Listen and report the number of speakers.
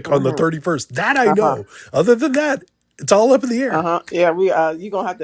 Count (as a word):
two